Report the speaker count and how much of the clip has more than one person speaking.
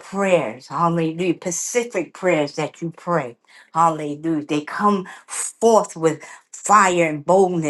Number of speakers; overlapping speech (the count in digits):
1, no overlap